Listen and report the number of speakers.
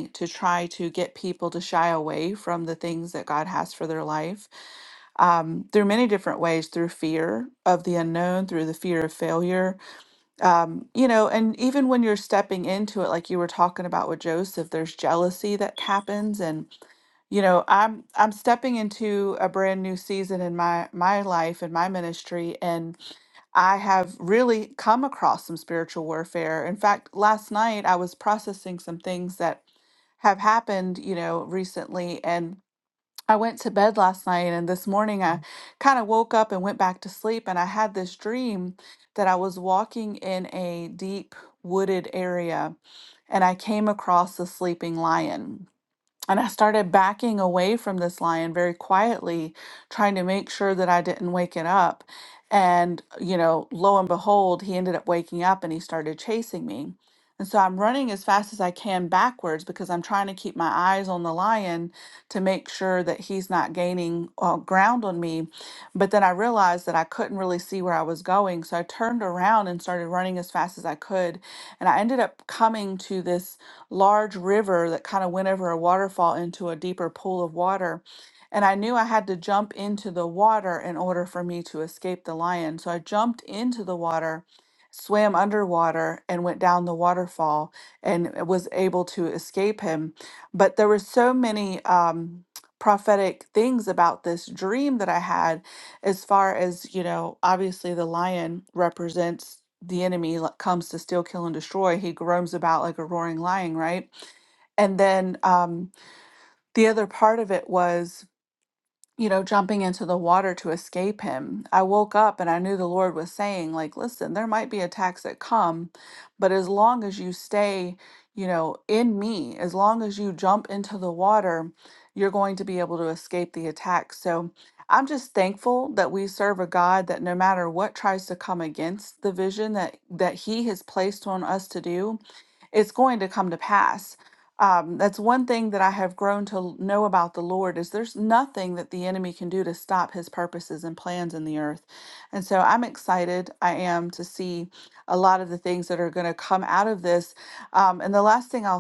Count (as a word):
one